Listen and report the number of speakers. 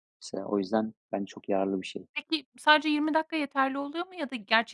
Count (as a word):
two